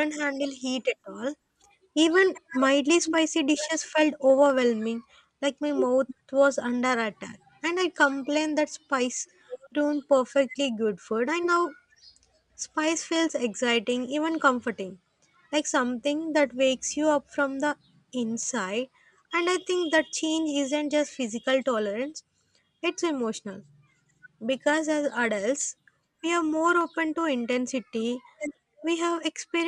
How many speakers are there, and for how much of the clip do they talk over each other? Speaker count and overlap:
1, no overlap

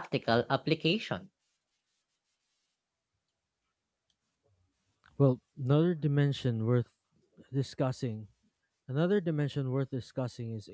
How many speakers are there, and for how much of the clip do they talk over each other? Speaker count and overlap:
2, no overlap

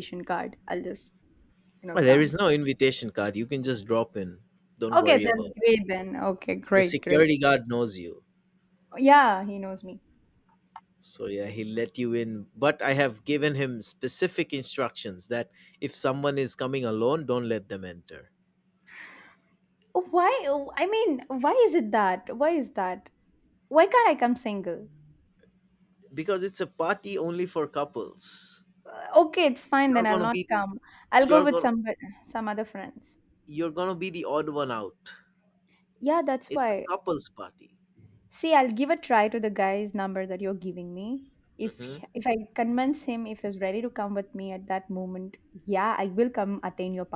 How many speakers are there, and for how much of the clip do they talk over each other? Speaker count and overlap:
2, about 7%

